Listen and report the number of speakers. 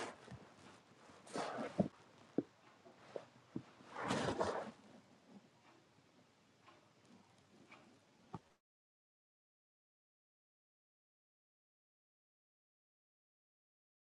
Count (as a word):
zero